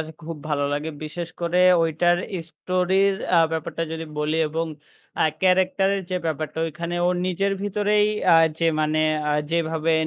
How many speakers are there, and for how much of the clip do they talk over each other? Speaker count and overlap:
1, no overlap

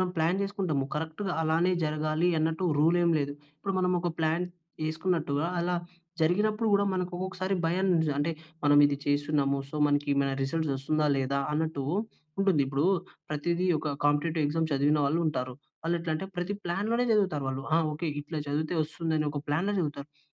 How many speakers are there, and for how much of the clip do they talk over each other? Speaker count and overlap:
1, no overlap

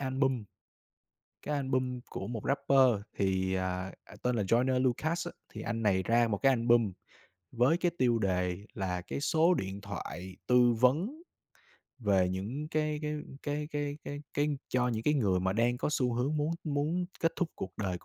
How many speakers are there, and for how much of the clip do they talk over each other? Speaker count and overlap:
1, no overlap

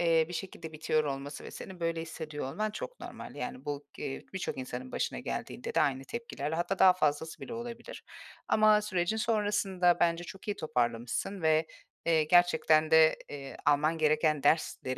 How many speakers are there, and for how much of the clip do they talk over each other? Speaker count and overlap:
1, no overlap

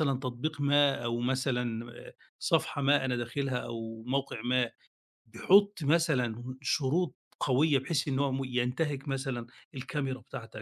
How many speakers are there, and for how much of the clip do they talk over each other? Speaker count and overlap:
1, no overlap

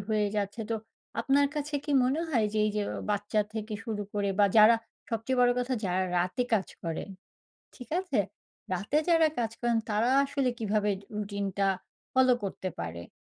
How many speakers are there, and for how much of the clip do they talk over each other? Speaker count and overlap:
1, no overlap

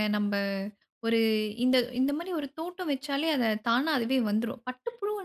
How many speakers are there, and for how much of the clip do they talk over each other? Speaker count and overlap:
1, no overlap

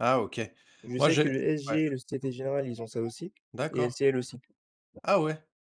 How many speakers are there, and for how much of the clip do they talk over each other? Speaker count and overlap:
2, about 18%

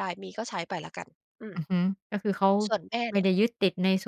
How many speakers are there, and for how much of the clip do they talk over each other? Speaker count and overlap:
2, about 3%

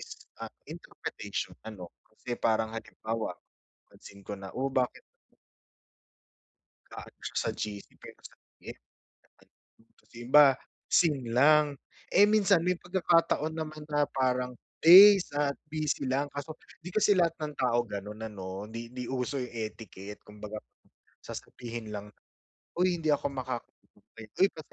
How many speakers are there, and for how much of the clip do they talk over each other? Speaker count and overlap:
1, no overlap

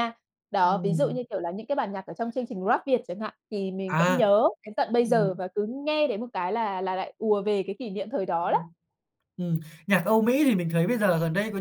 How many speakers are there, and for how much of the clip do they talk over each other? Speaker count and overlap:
2, about 10%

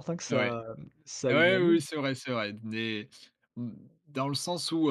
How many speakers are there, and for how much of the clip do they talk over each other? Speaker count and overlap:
2, about 15%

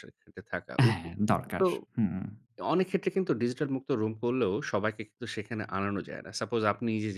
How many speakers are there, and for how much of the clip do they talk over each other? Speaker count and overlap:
2, about 6%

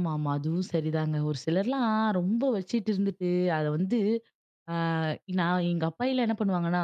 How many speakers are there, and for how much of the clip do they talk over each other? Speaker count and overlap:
1, no overlap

